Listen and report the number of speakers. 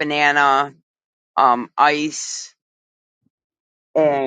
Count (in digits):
1